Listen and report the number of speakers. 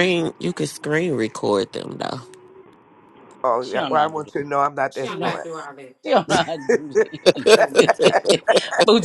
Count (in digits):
4